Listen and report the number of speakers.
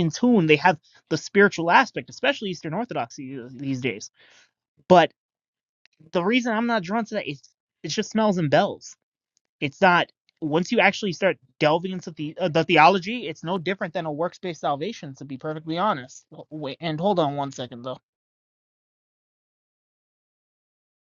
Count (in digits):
1